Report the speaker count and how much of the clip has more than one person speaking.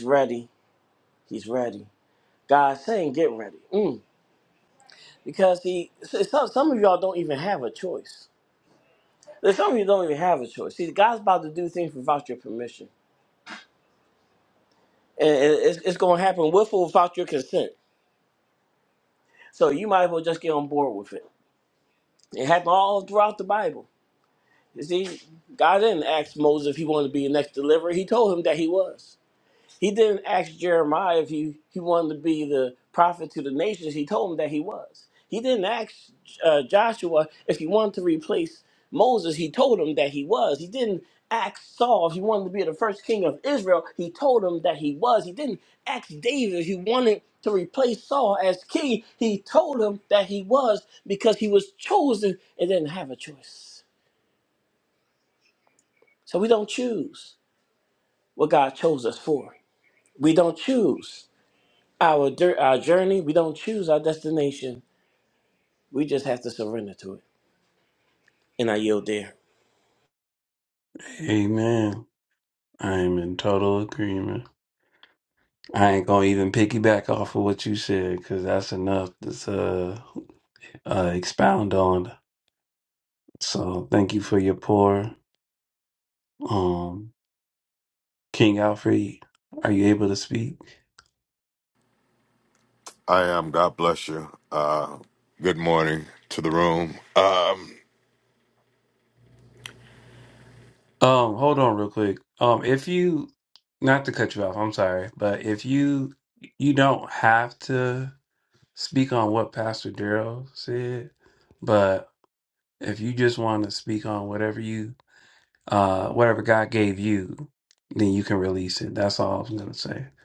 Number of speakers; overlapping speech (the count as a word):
three, no overlap